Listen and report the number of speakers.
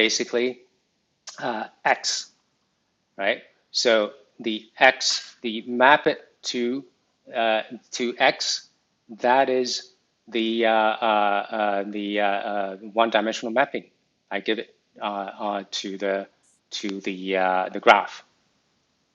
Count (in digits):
1